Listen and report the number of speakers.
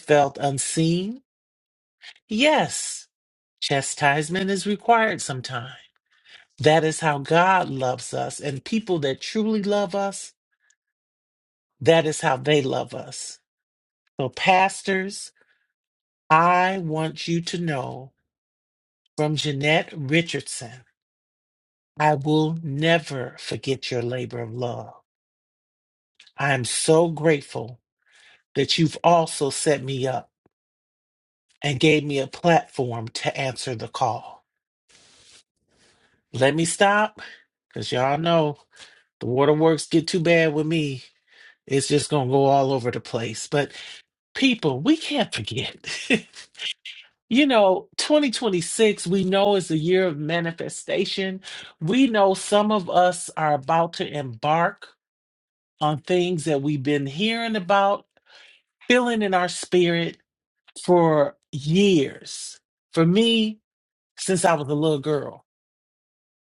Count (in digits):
1